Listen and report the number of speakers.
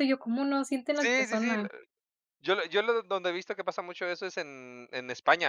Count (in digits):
2